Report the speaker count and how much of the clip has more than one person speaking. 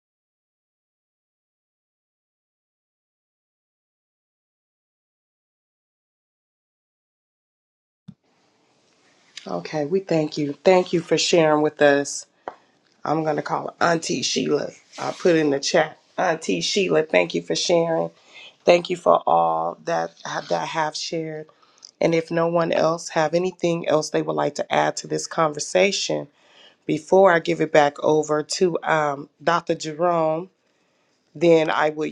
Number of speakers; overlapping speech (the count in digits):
1, no overlap